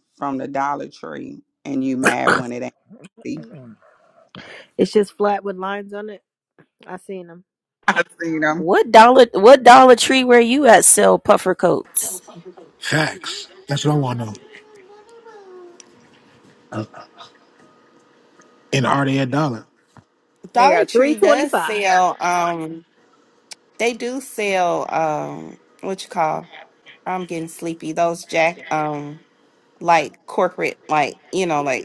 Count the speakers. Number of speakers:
five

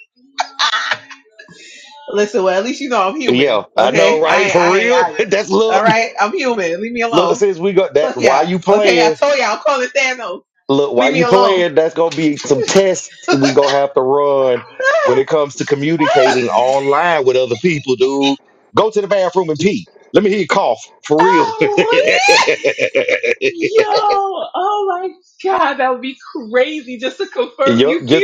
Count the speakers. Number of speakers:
two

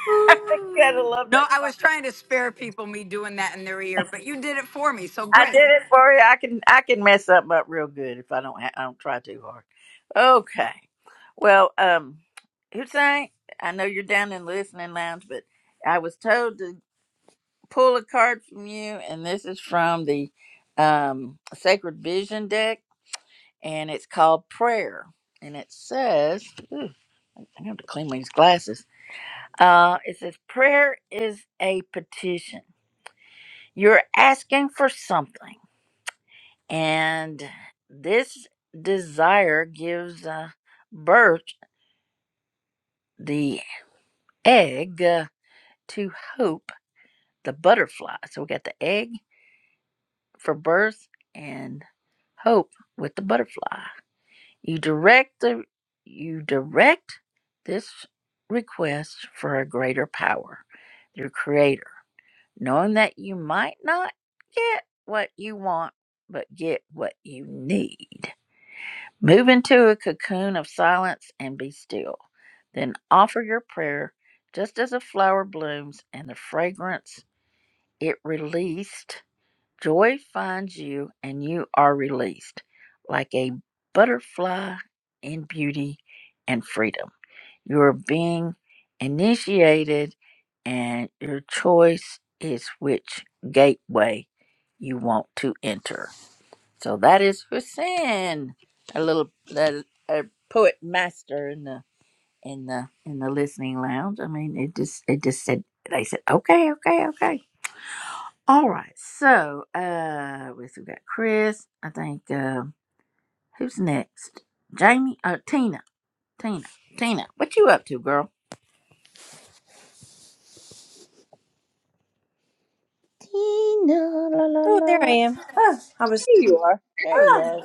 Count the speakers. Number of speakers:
three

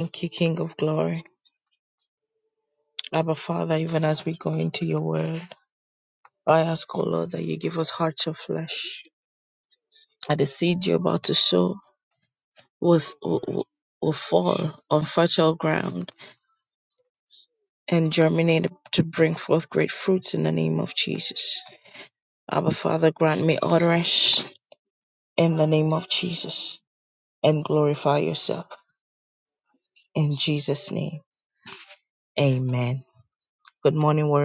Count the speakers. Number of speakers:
one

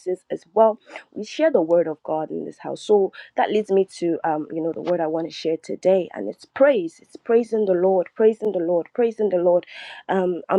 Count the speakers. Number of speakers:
one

